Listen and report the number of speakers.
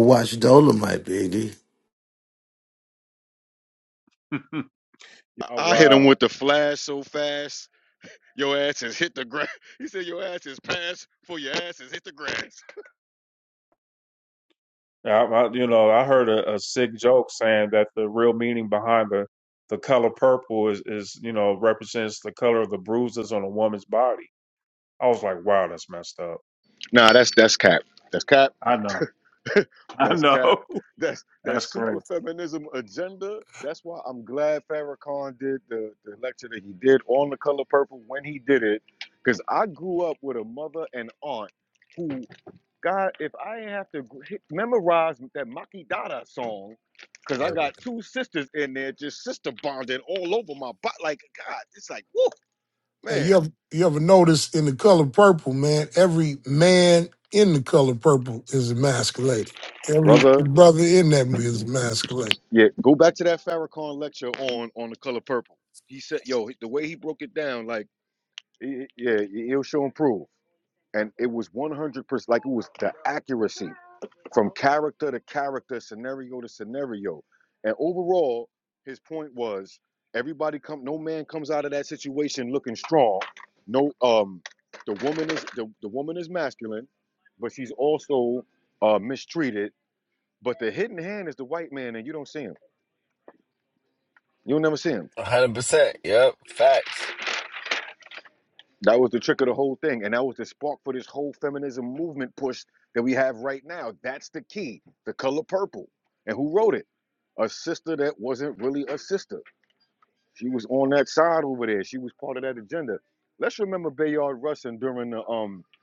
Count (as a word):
five